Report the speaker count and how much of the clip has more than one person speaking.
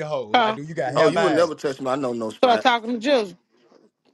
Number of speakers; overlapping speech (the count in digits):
3, about 23%